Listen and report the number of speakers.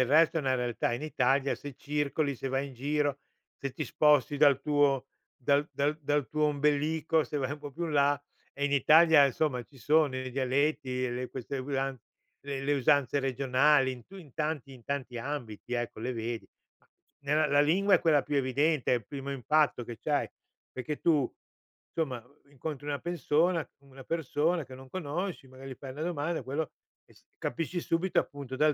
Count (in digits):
1